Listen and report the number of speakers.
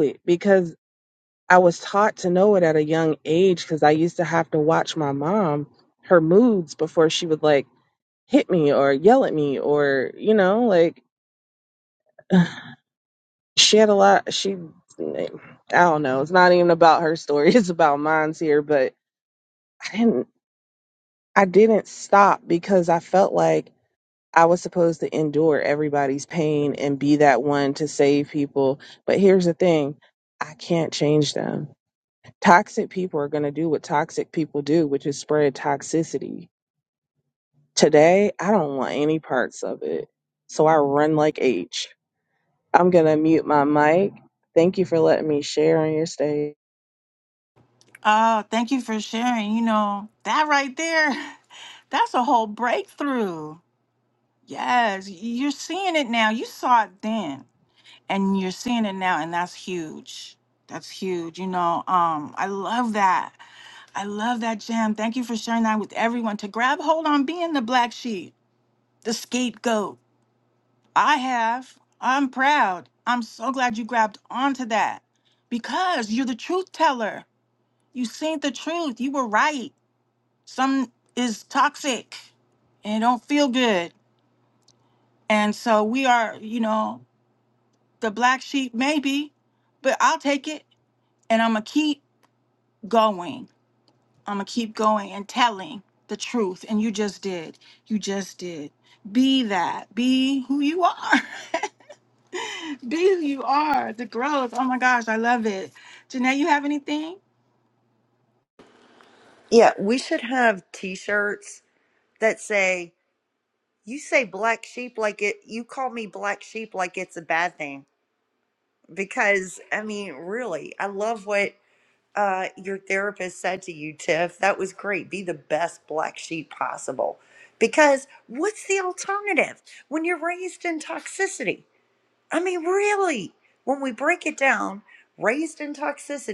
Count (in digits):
3